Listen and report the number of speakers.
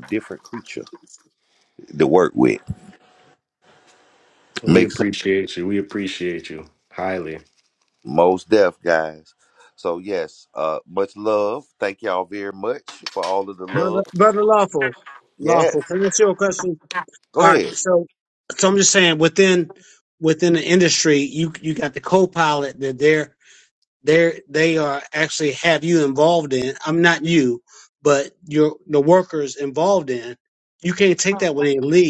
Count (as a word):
three